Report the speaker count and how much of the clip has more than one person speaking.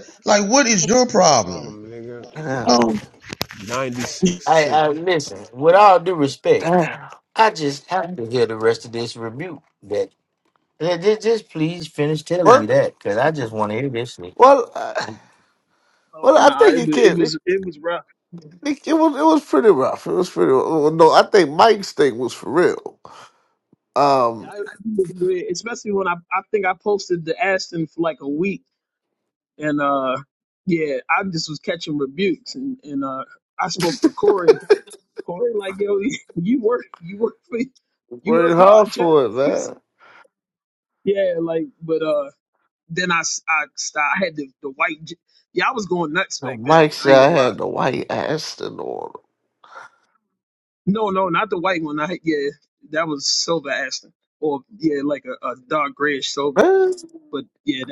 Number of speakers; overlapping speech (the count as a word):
five, about 8%